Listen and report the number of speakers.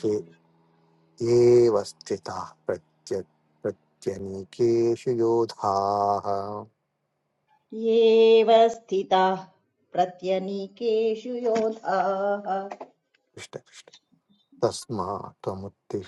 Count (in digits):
2